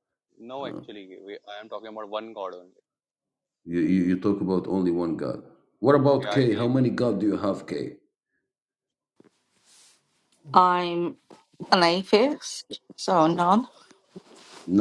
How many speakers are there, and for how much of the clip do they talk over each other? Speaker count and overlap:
3, about 6%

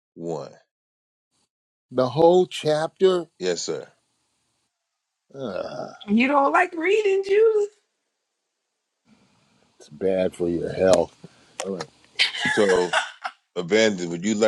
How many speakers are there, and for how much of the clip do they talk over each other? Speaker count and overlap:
3, no overlap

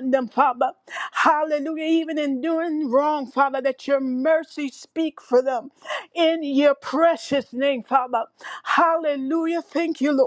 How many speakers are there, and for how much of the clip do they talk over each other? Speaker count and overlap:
1, no overlap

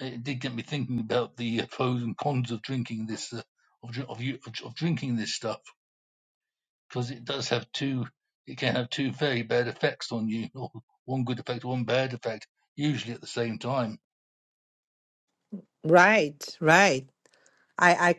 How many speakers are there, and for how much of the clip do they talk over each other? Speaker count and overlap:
2, no overlap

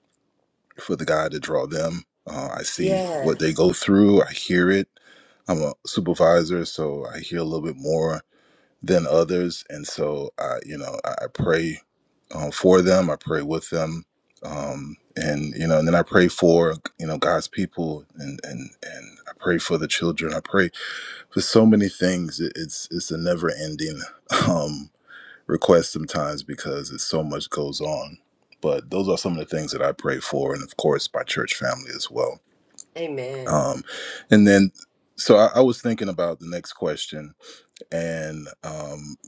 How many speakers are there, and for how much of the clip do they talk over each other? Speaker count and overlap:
2, about 2%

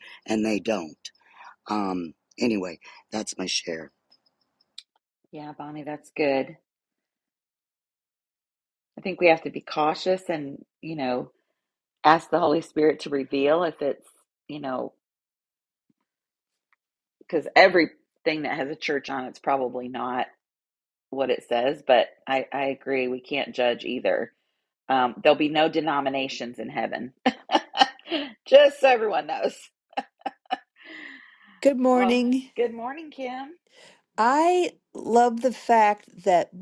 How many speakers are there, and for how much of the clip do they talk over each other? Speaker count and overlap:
3, about 1%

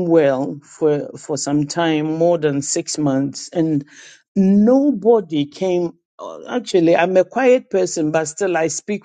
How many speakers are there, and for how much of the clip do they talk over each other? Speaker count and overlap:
1, no overlap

